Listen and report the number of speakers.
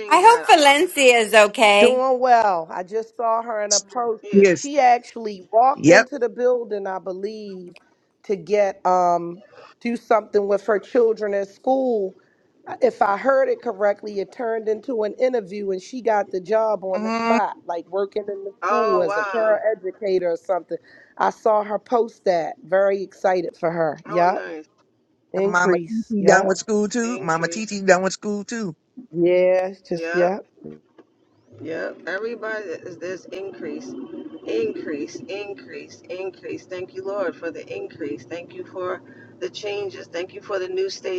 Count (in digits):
4